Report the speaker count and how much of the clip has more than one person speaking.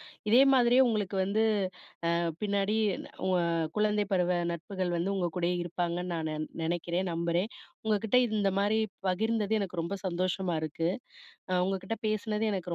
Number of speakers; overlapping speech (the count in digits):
1, no overlap